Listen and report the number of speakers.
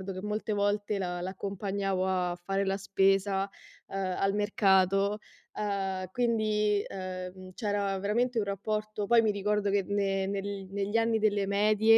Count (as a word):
one